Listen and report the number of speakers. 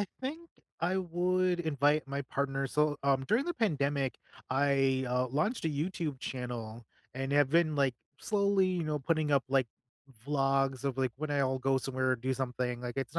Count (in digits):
1